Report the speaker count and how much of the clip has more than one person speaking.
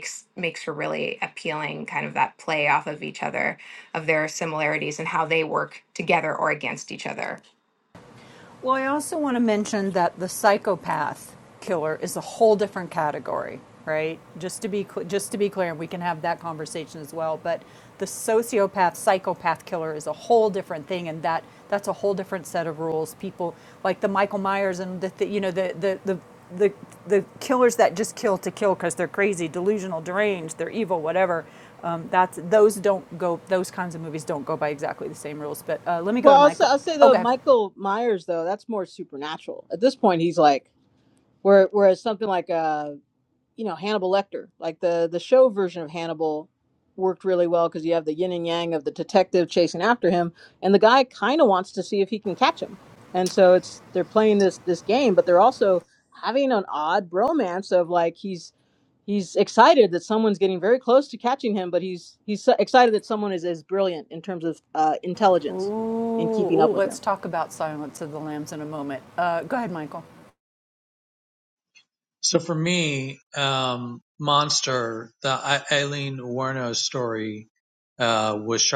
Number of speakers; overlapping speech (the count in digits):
4, about 2%